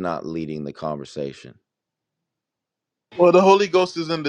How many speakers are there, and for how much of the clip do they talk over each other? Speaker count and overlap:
two, no overlap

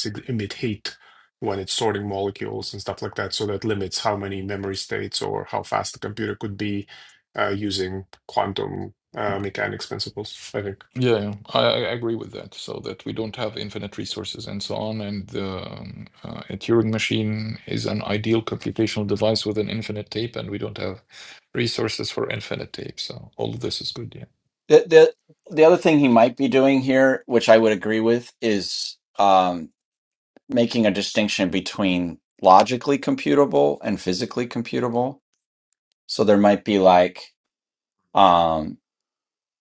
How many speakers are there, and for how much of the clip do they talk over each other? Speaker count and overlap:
three, no overlap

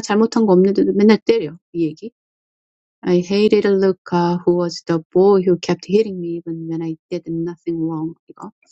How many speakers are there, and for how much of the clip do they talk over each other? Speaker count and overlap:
one, no overlap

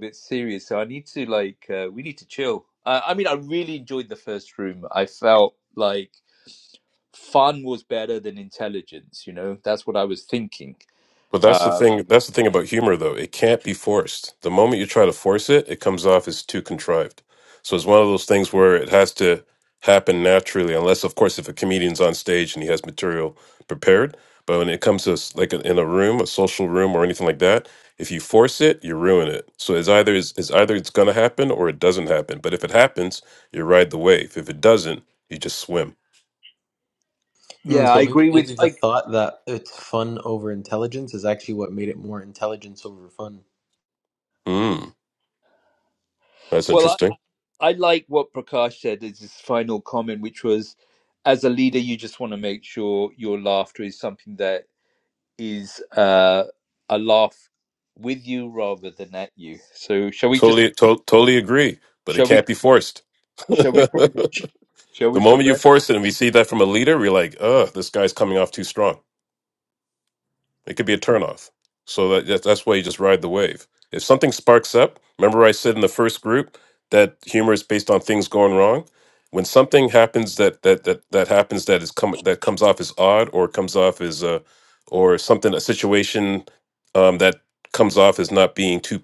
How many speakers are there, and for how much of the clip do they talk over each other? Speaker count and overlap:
three, about 4%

